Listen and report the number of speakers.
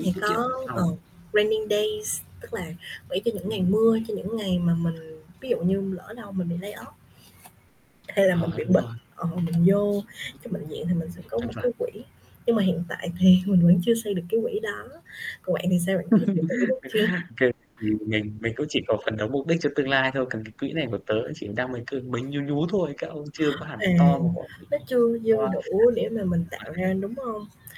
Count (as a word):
two